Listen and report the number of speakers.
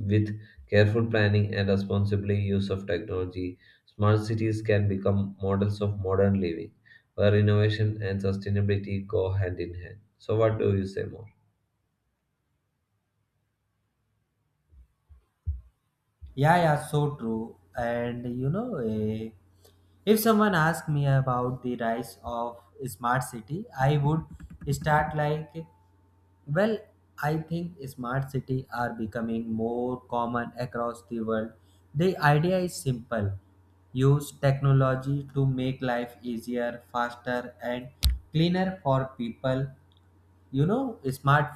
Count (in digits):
2